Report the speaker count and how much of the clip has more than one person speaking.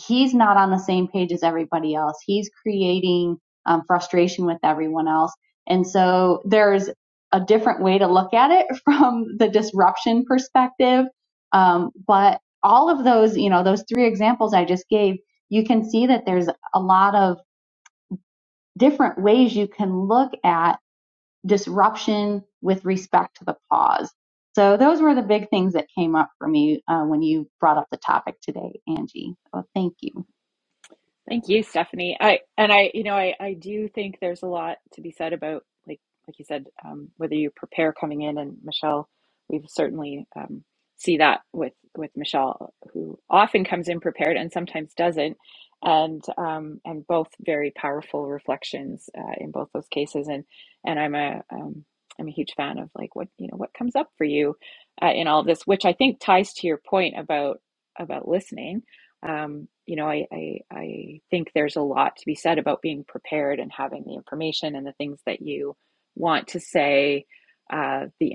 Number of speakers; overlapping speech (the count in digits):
2, no overlap